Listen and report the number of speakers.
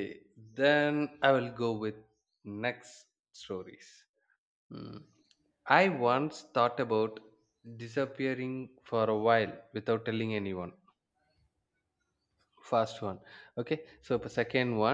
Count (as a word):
one